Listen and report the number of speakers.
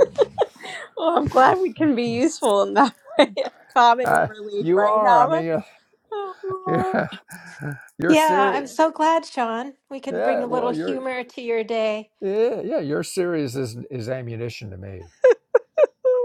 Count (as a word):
three